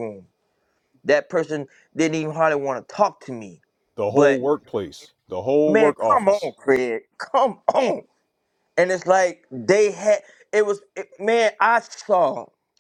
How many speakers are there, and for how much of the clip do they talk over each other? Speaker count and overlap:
two, about 7%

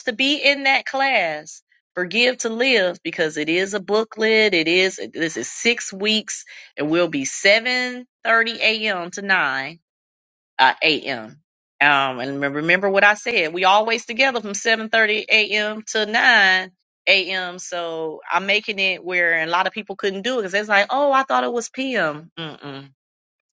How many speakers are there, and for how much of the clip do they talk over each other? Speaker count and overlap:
one, no overlap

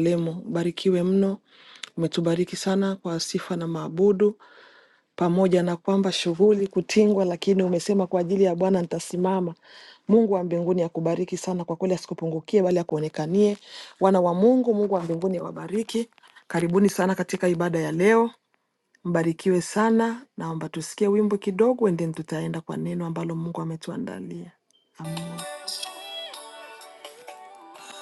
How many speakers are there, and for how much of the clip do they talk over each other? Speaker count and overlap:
one, no overlap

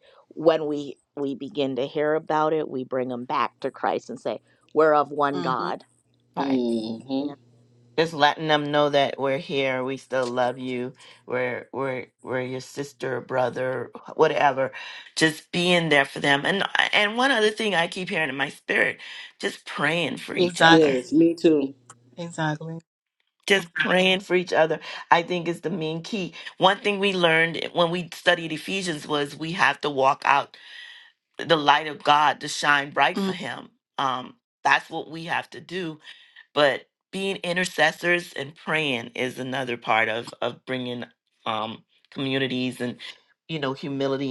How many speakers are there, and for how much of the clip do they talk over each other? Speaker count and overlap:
four, about 3%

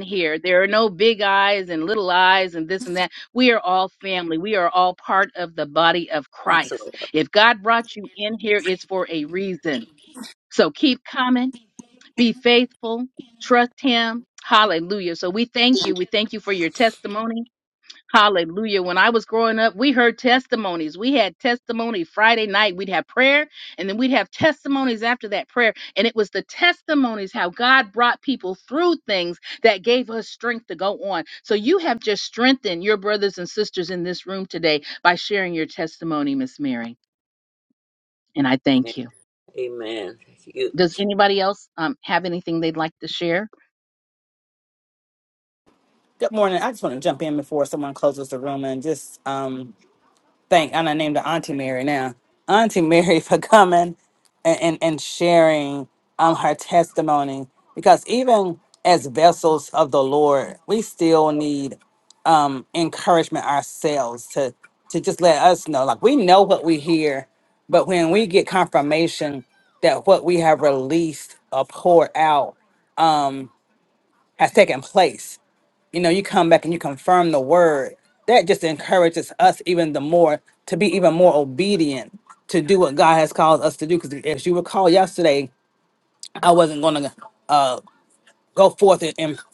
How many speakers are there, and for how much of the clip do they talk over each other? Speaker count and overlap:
three, about 1%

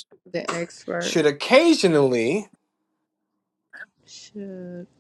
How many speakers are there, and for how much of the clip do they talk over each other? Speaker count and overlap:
two, about 2%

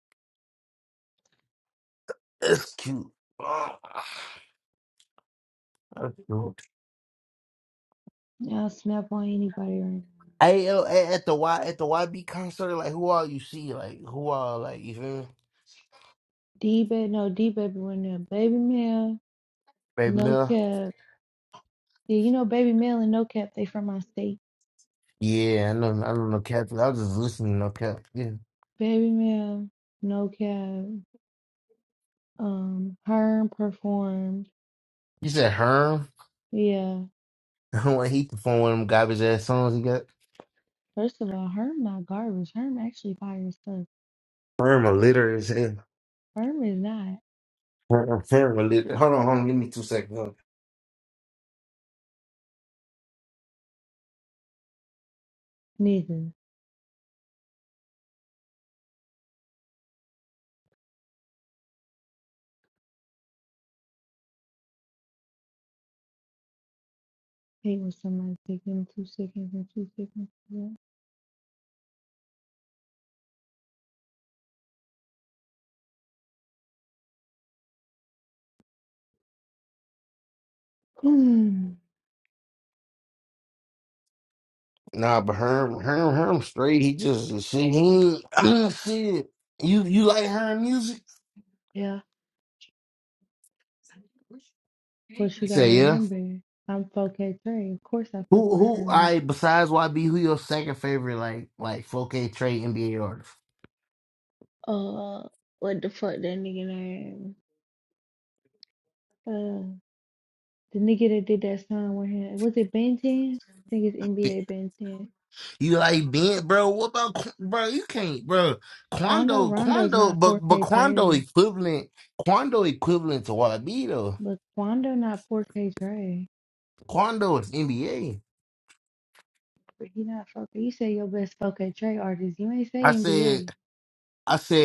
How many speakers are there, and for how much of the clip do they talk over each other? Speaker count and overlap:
two, about 3%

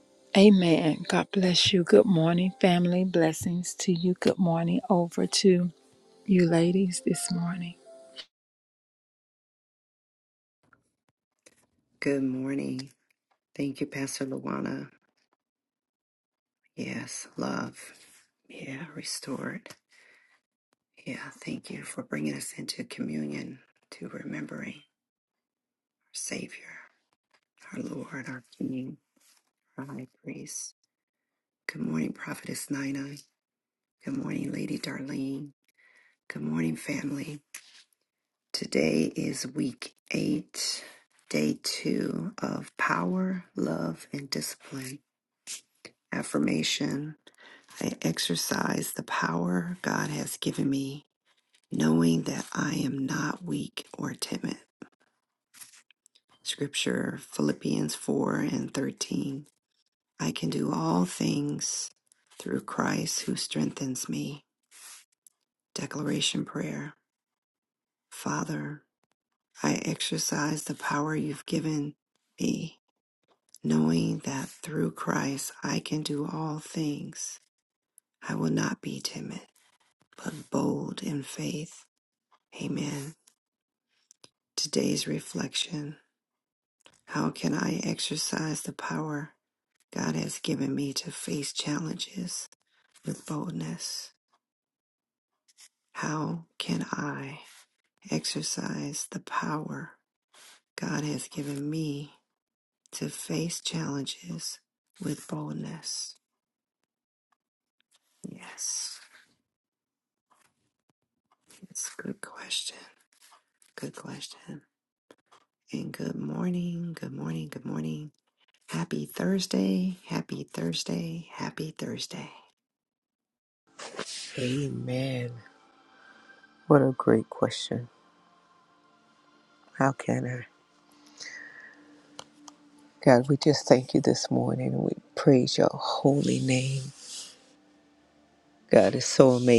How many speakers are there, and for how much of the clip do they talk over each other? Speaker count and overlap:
three, no overlap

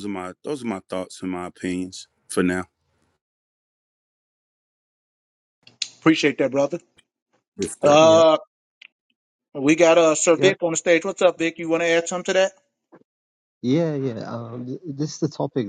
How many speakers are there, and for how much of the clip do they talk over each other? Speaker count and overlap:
three, about 4%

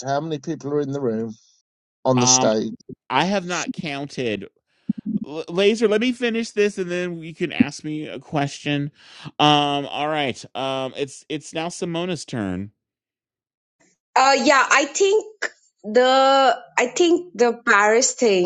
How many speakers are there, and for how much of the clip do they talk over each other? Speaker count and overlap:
three, about 2%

